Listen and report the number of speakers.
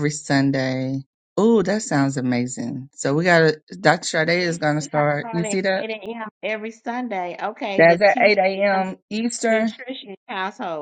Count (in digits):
2